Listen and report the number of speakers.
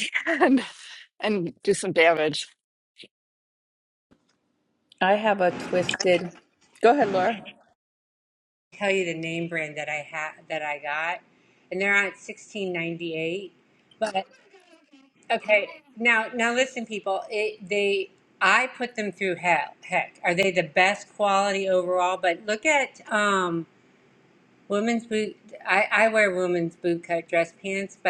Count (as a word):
three